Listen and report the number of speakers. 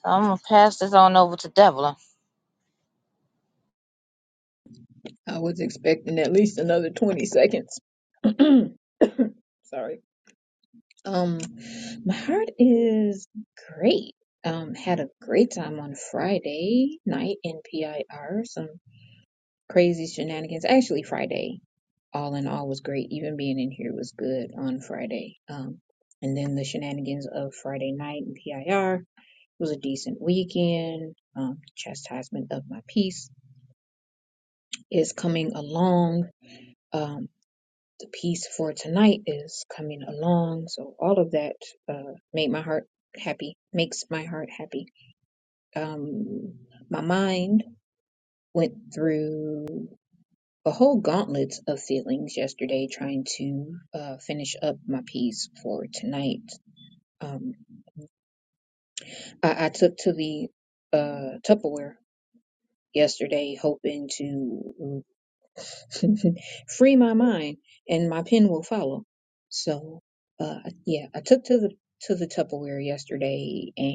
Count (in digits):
2